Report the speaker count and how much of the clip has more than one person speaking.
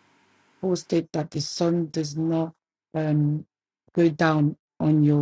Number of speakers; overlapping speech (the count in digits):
1, no overlap